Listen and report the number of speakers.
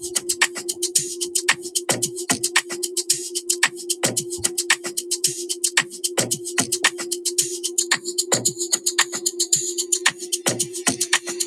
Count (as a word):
zero